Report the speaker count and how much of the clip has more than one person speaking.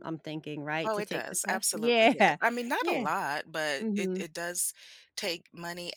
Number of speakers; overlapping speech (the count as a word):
two, about 37%